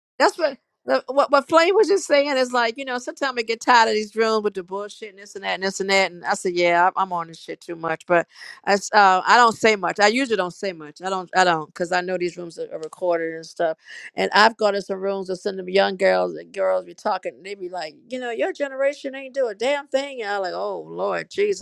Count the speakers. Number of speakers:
one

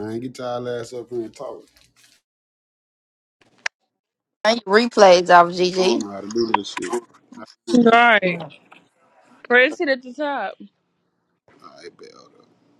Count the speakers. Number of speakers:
three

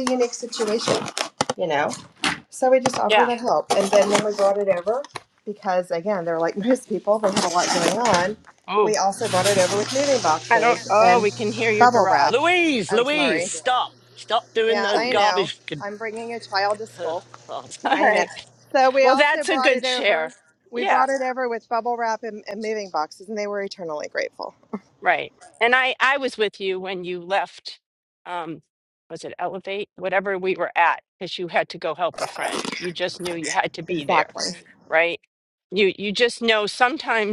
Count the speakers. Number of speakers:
three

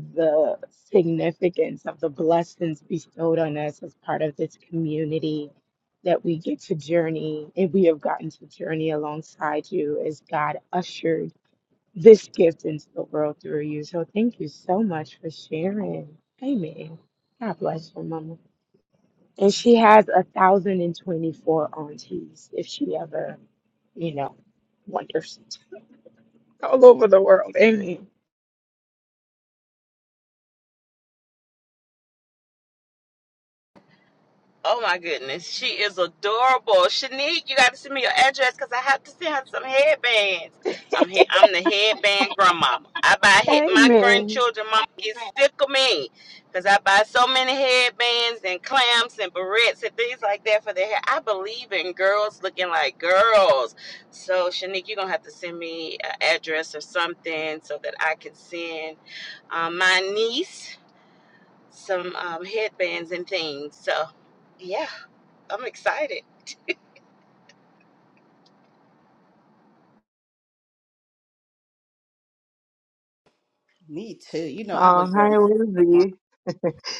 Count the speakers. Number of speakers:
four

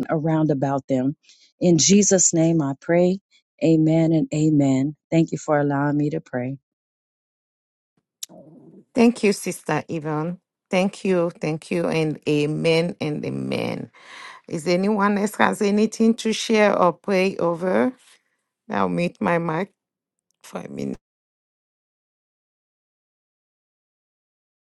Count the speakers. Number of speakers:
two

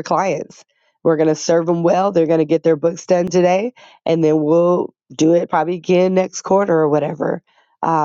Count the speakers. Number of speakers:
one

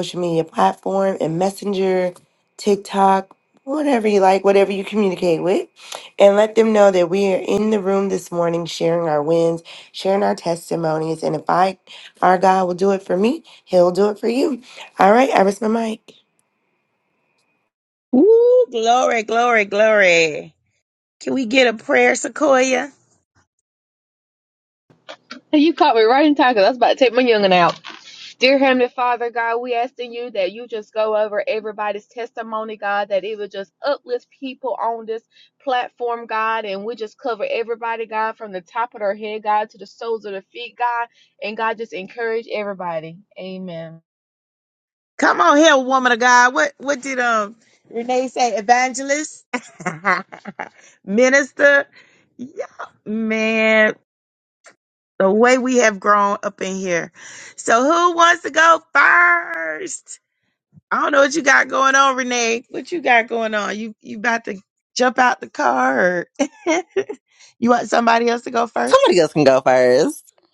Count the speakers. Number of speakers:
four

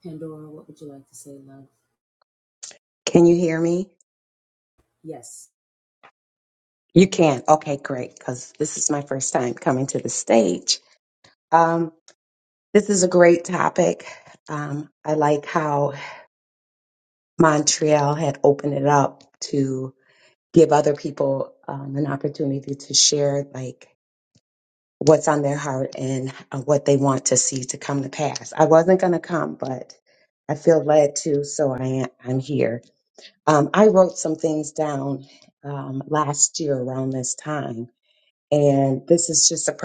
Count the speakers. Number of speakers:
two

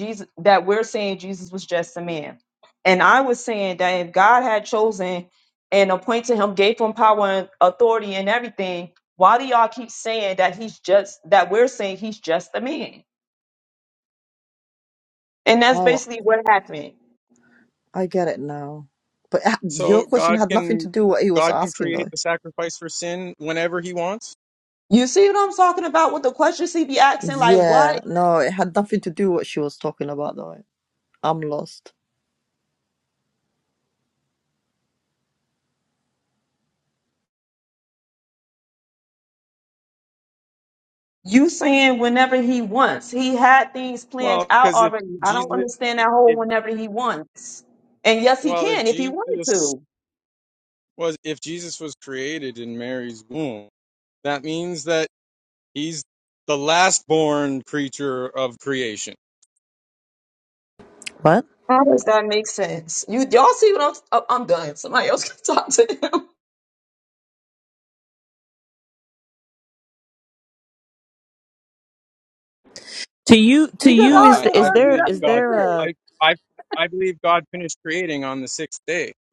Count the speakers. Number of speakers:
four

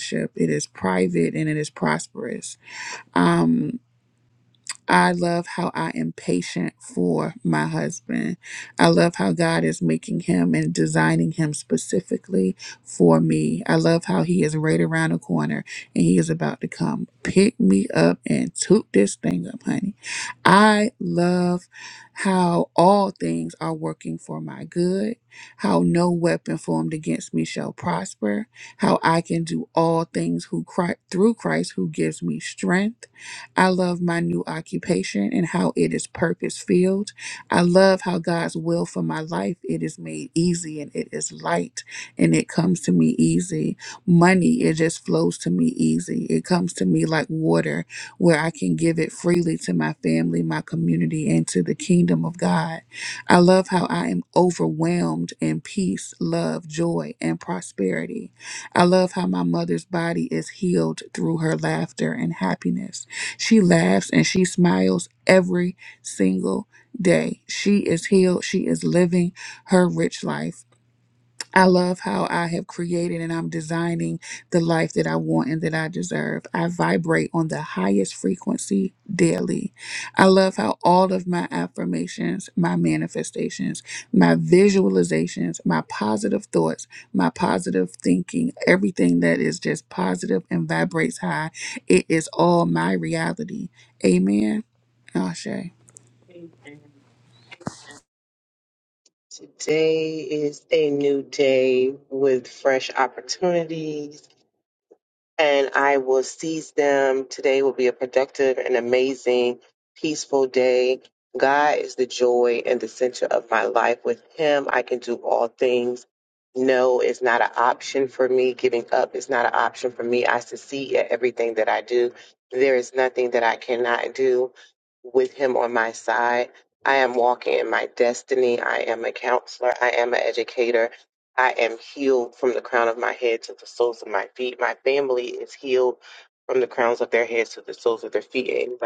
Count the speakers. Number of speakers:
two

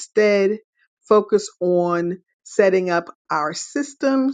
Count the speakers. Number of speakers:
one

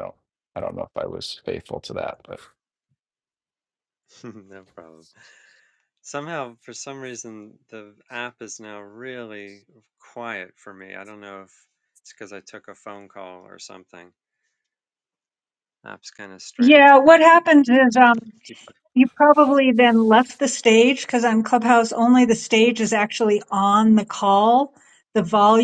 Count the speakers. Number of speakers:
three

